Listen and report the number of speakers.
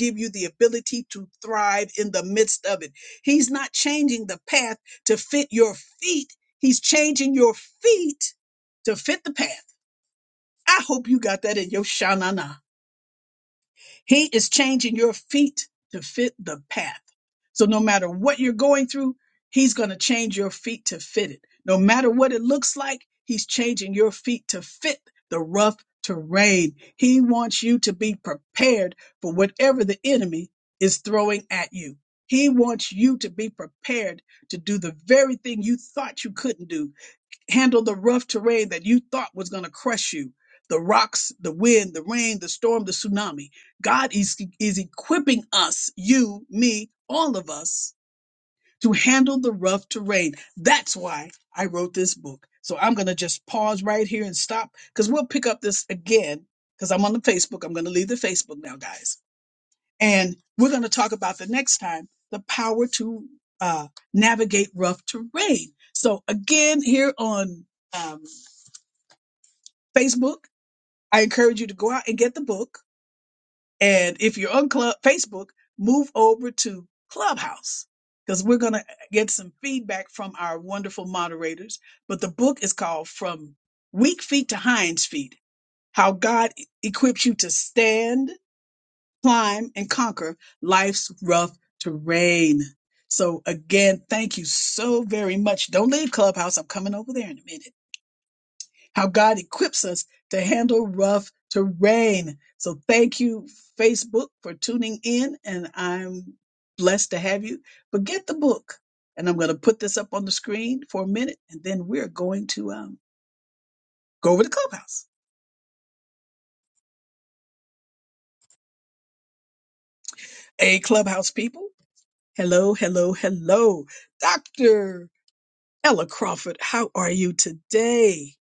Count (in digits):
1